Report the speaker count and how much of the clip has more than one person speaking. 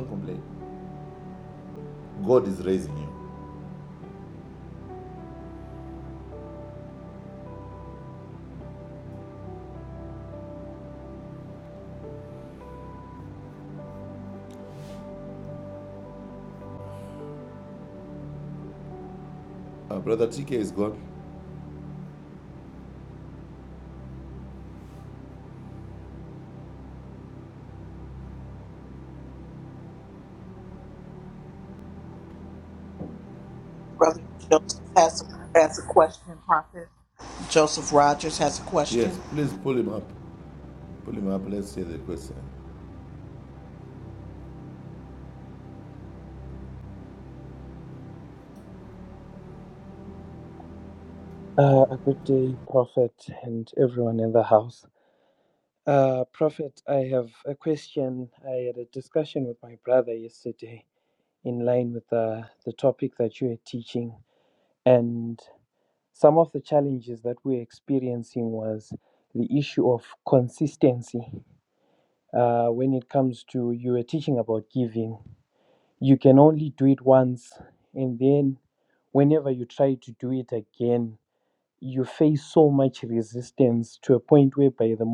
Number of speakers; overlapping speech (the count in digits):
3, under 1%